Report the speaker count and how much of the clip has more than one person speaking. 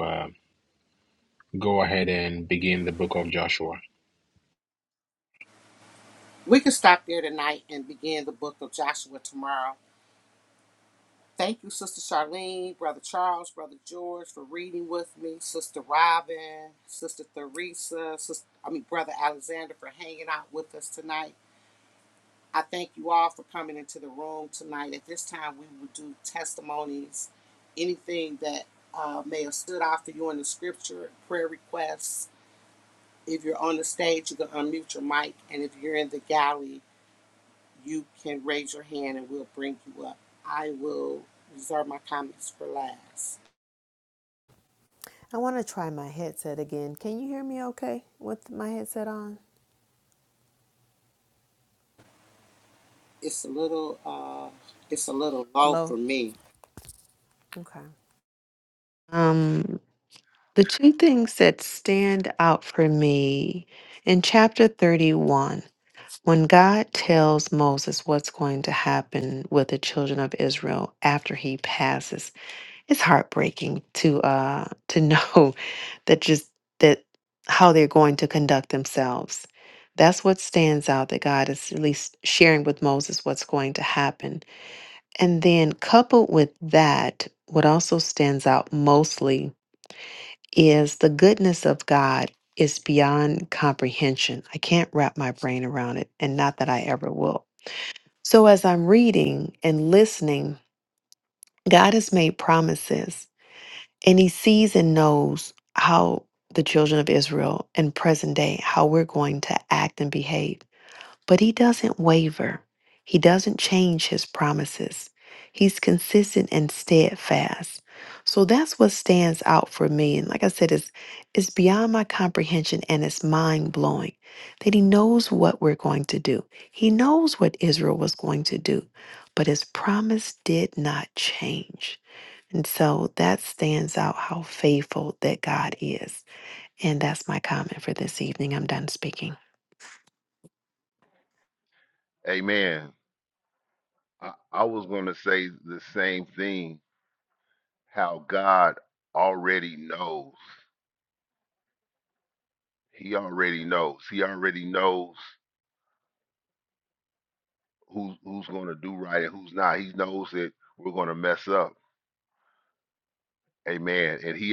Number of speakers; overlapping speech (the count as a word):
four, under 1%